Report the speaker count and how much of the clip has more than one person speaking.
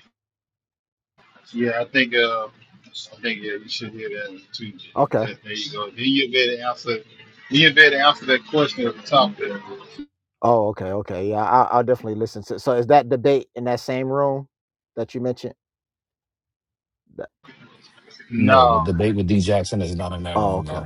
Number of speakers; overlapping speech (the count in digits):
3, about 6%